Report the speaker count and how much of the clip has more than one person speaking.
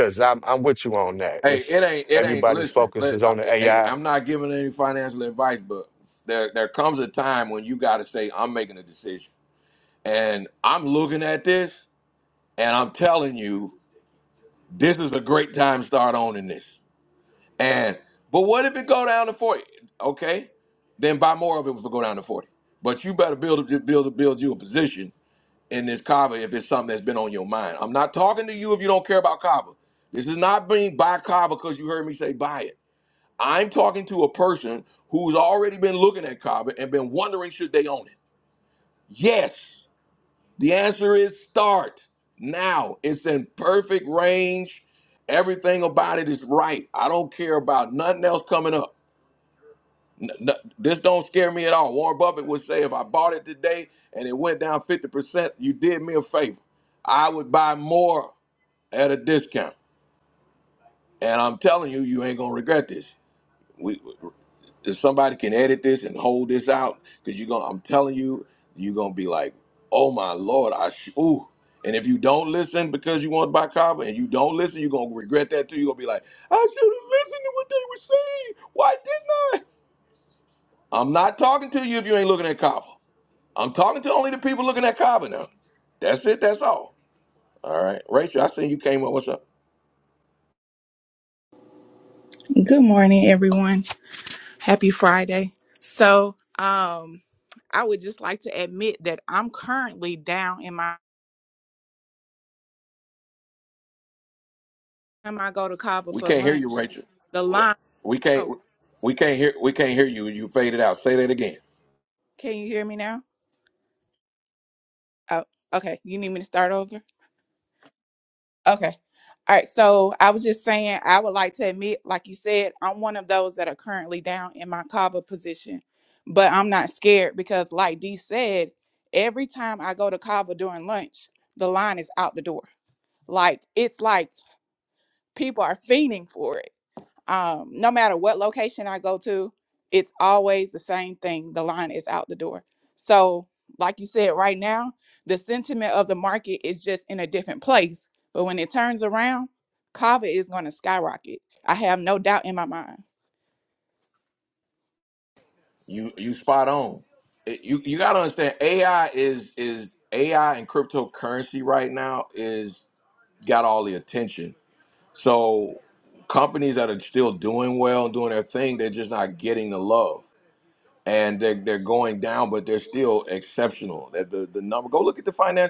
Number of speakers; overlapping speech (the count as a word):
three, about 2%